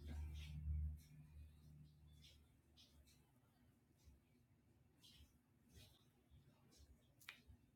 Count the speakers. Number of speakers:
zero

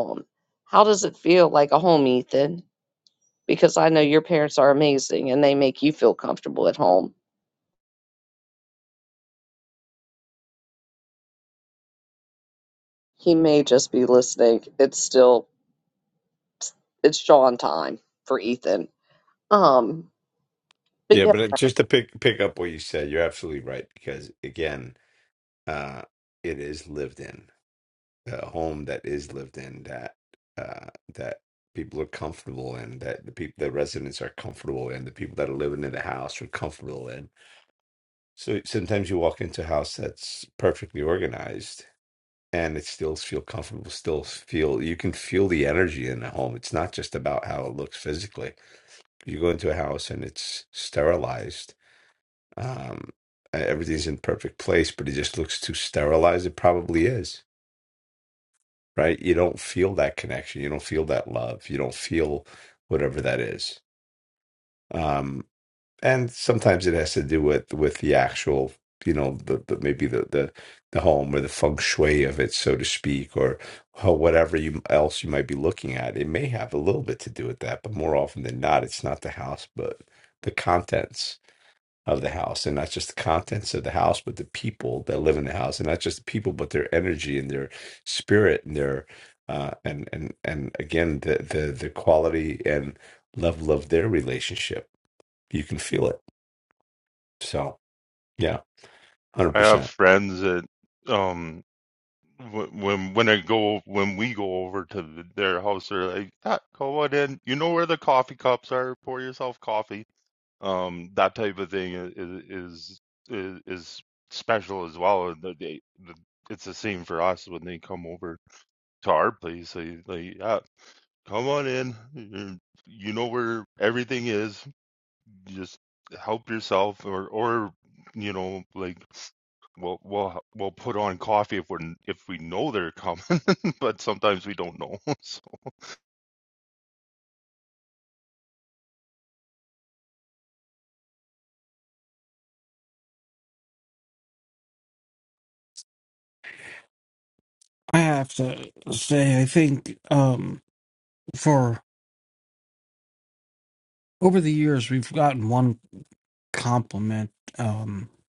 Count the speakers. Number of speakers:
four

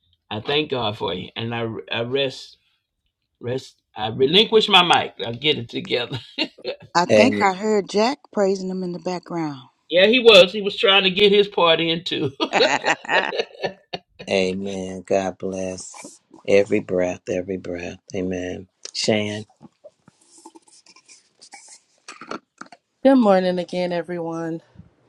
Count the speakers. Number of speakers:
four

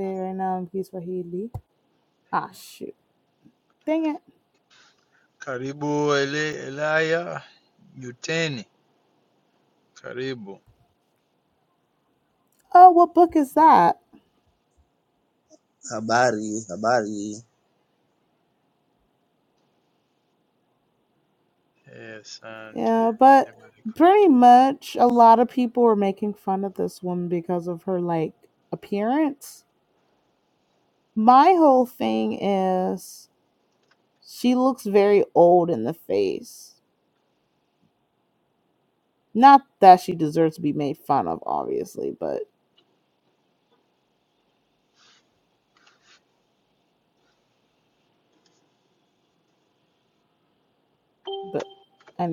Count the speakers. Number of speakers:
three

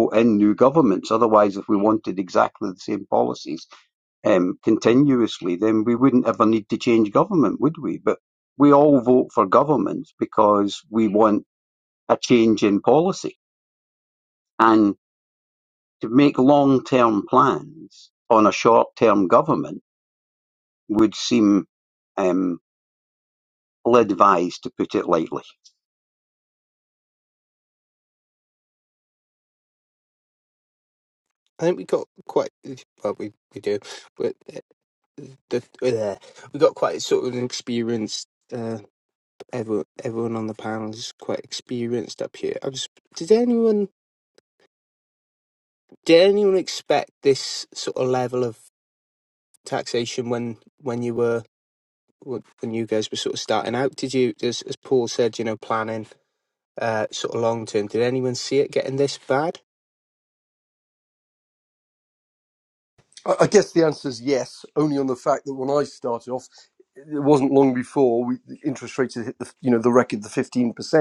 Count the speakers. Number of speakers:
three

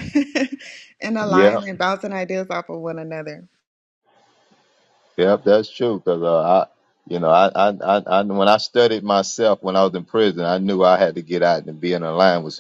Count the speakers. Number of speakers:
two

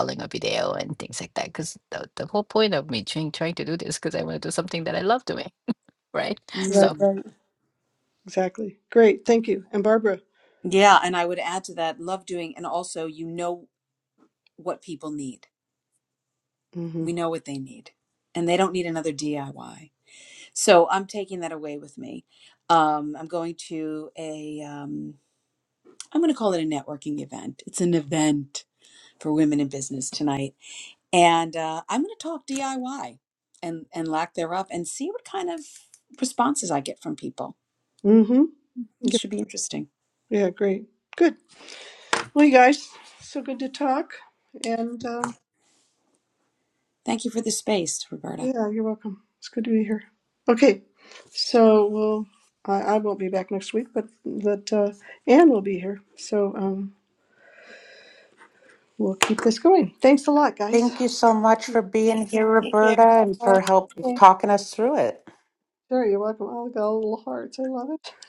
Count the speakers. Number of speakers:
four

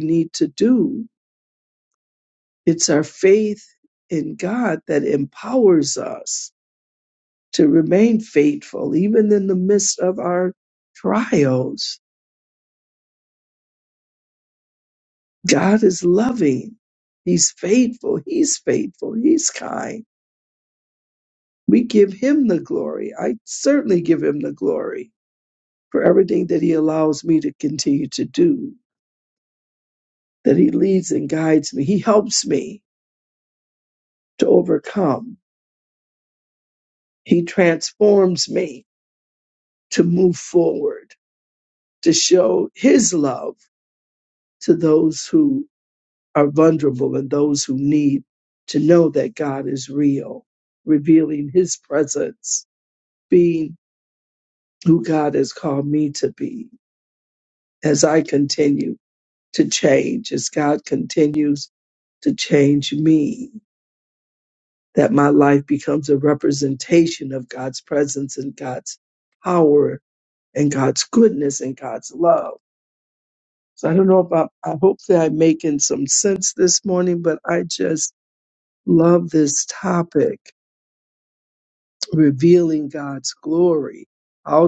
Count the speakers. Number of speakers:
one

